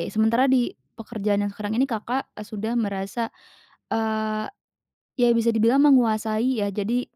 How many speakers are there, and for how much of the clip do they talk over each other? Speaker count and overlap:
one, no overlap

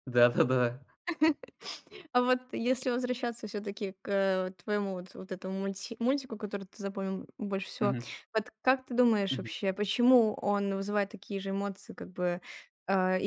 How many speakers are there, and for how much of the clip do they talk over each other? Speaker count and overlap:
two, about 3%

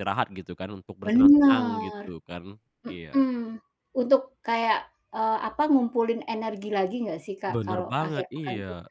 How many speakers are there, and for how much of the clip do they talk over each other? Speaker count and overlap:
two, about 27%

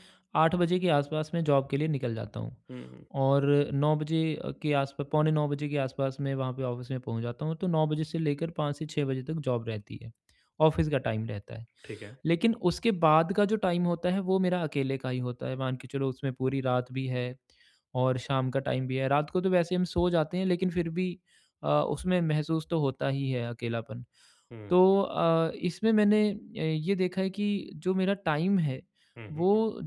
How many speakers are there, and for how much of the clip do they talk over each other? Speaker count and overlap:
two, under 1%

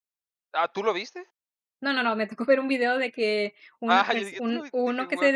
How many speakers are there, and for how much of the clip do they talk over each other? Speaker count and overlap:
two, about 28%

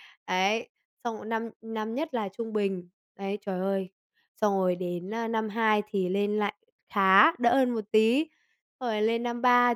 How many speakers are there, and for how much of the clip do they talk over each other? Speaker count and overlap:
one, no overlap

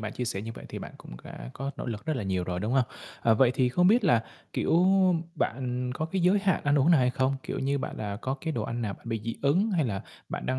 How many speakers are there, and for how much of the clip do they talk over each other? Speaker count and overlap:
one, no overlap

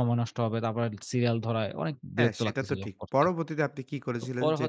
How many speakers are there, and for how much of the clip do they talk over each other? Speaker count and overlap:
two, about 34%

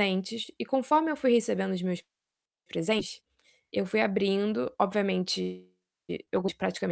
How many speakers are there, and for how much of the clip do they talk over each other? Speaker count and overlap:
one, no overlap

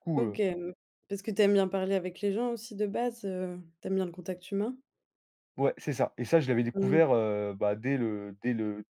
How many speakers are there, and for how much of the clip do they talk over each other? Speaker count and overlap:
two, about 5%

